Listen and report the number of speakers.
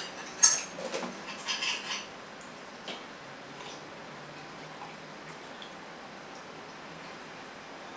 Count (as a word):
zero